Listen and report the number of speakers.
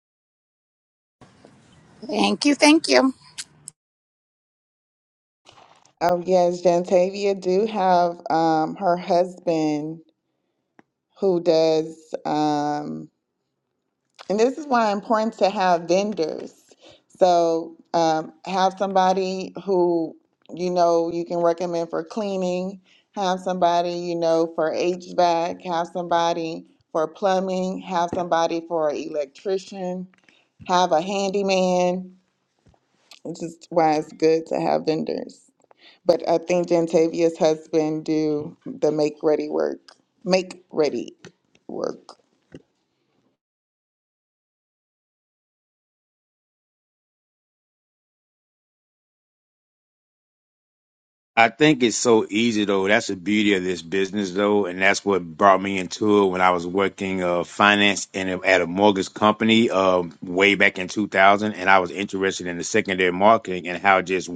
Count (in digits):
3